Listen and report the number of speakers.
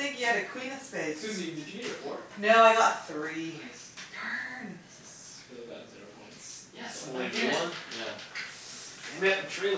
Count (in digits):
3